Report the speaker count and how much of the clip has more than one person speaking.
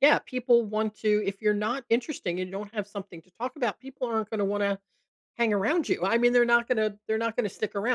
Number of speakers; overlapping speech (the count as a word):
one, no overlap